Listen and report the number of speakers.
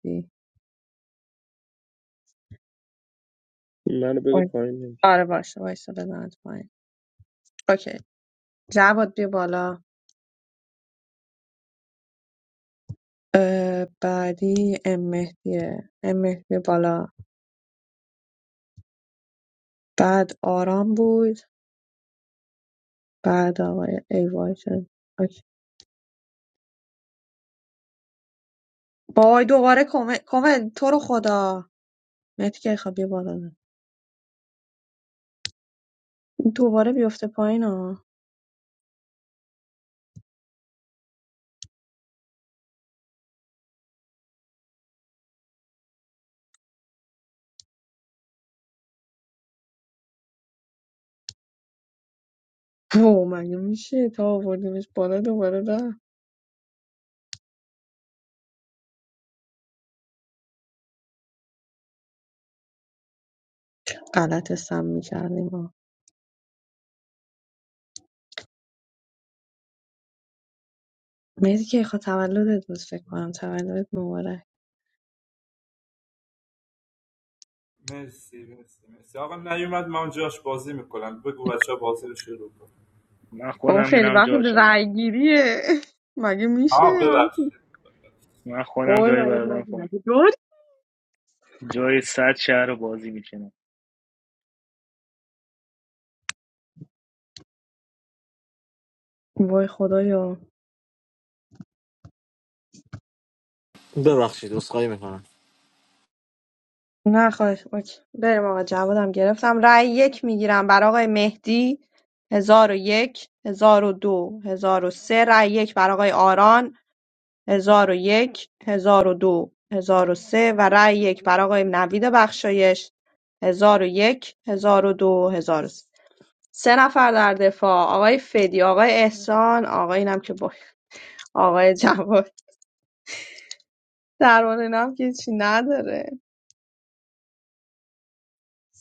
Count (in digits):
5